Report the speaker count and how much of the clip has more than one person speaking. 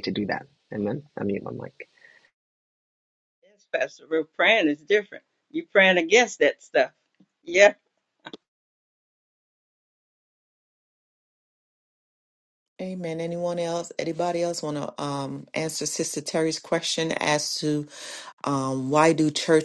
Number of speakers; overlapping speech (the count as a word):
three, no overlap